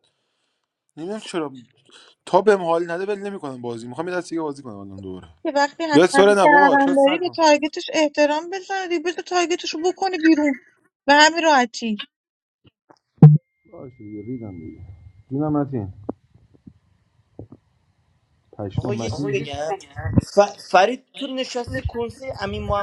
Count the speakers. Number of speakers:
three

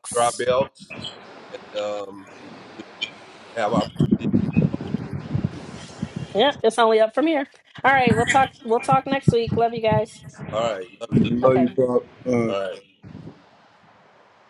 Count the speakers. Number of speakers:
three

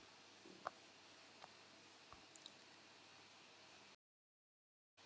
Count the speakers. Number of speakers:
zero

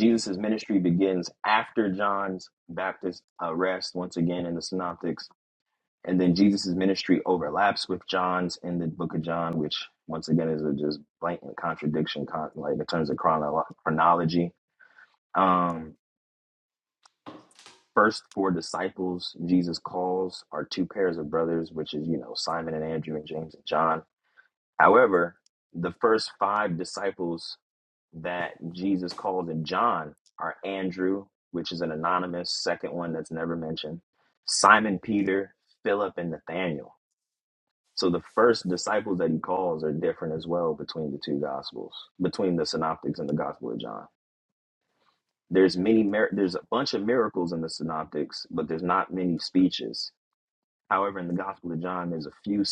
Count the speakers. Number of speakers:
one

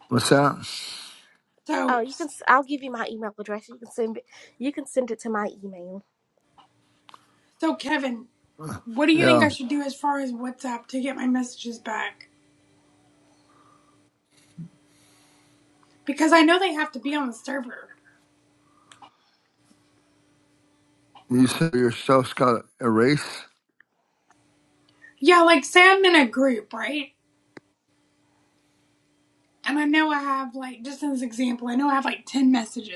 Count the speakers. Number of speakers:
three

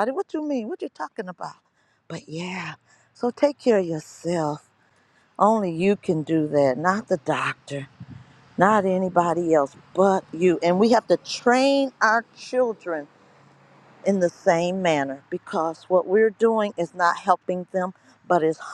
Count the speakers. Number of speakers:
one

